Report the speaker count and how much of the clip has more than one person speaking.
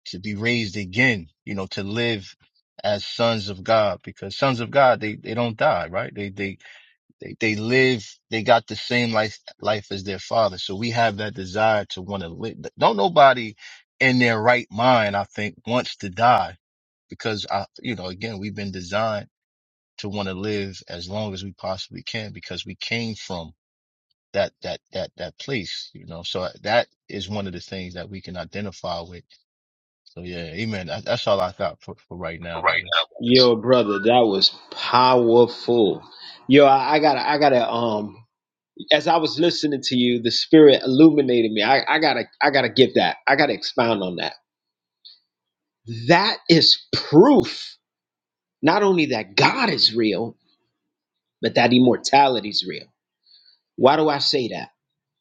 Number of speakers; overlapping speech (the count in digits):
2, no overlap